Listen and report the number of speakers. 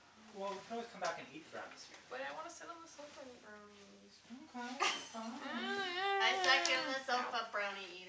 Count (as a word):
three